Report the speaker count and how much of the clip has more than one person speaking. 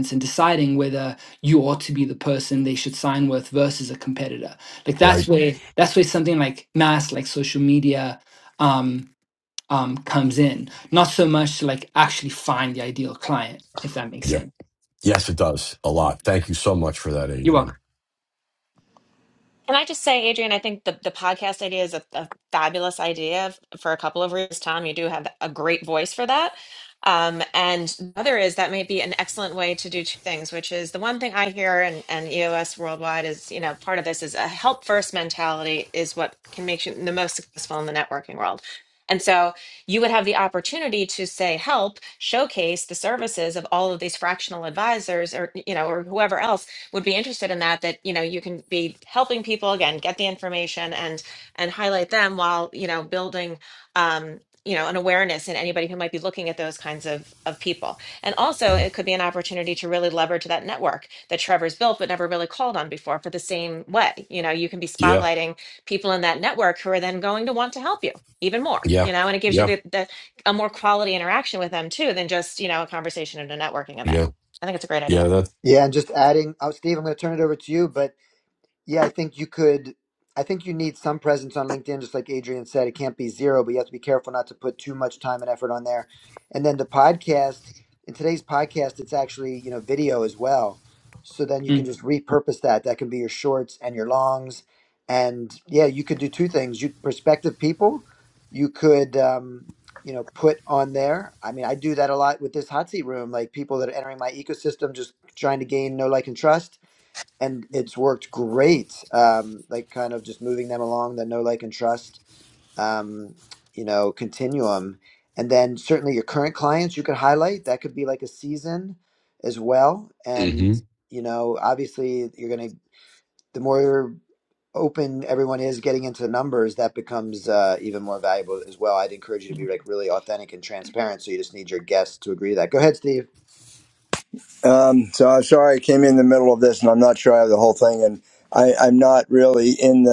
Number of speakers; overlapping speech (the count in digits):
5, about 2%